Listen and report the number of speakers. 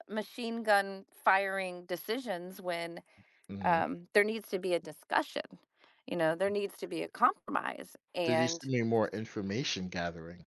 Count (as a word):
two